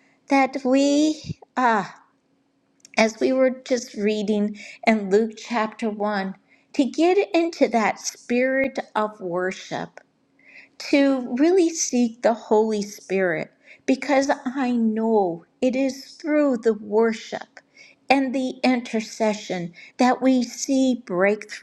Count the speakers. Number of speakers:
one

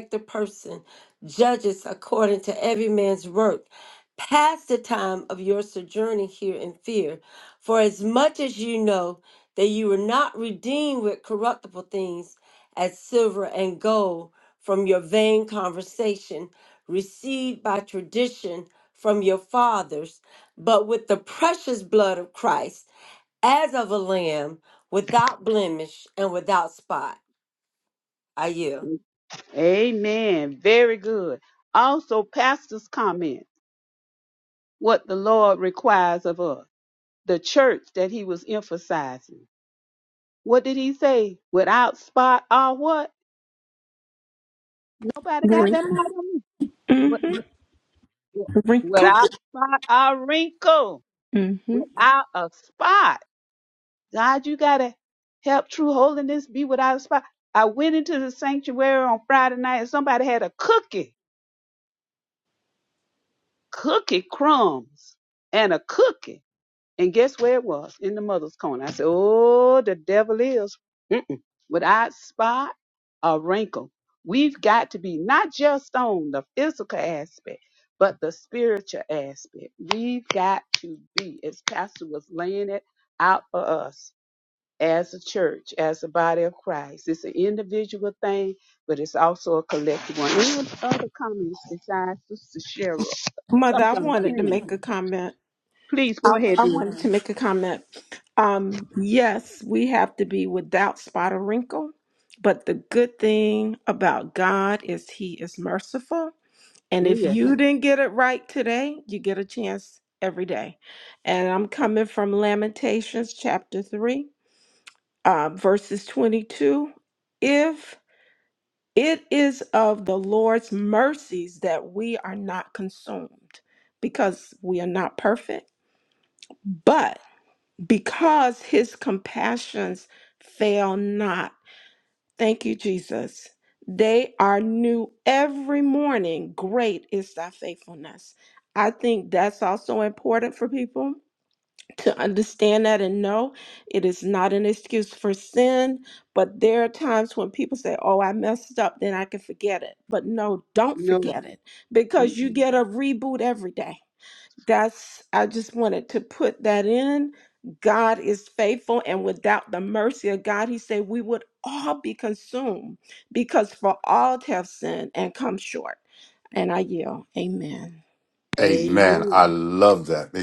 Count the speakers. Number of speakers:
four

